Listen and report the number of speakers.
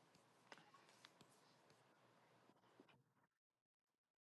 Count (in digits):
0